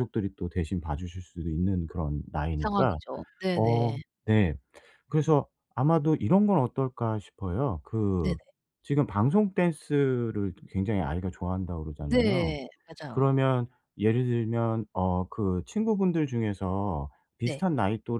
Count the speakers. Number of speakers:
two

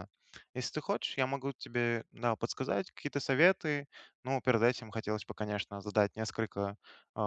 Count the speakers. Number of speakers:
one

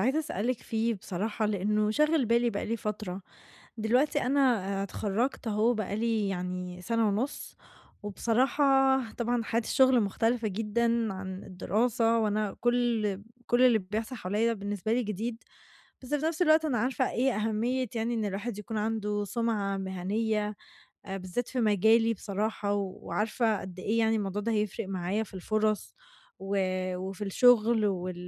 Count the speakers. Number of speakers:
one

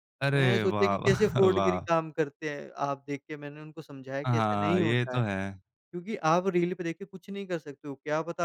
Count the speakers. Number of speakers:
two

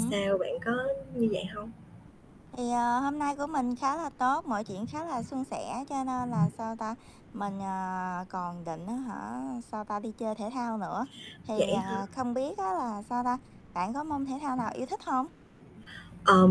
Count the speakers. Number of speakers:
two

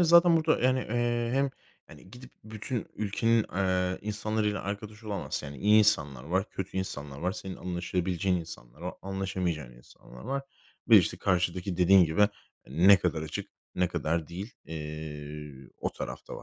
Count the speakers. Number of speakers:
one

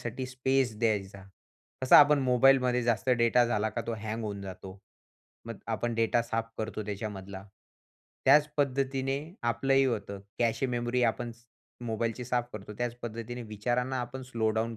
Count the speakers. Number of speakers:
one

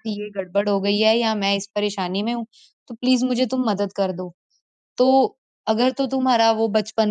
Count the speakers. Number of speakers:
one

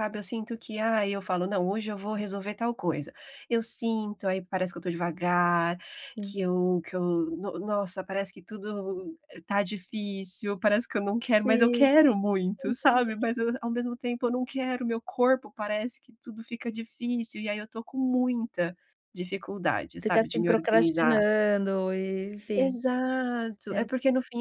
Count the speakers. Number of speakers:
two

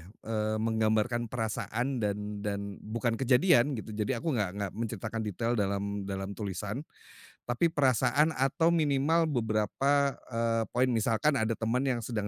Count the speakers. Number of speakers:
one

